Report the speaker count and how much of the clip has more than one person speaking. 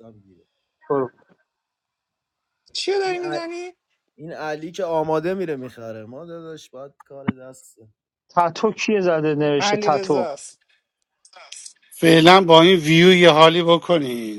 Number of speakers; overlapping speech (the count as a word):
four, about 7%